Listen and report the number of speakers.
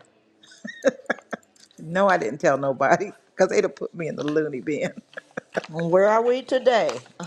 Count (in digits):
2